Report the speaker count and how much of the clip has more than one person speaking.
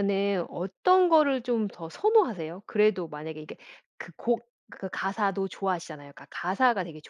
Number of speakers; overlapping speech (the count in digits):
1, no overlap